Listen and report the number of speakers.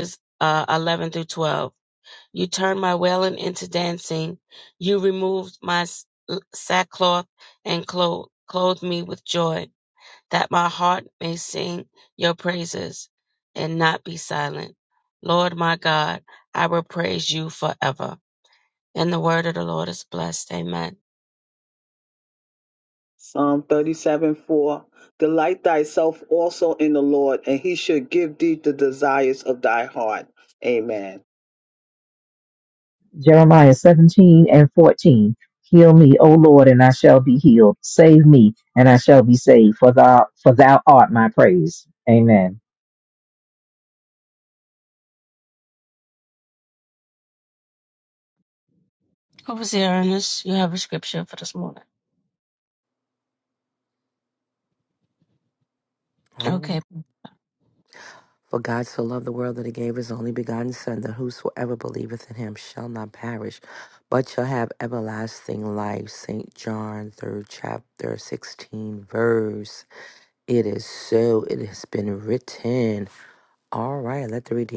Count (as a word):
four